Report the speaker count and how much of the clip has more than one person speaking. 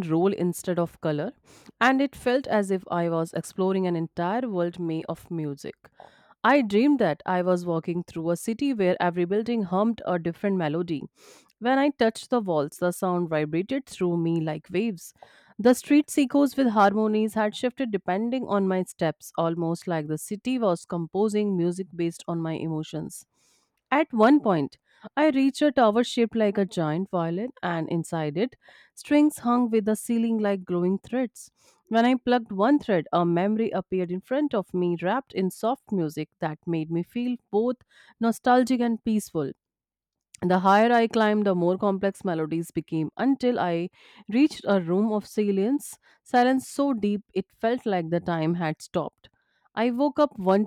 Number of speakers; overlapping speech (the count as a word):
one, no overlap